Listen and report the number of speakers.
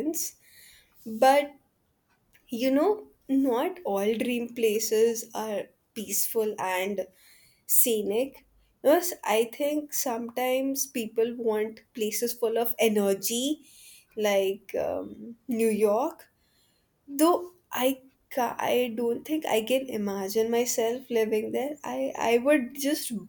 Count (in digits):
1